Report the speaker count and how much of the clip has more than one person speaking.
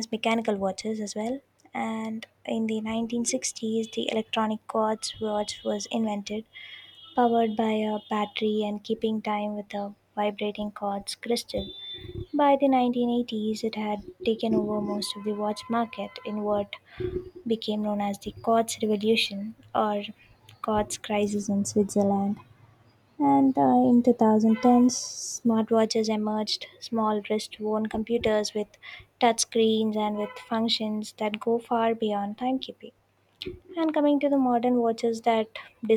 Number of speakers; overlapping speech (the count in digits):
1, no overlap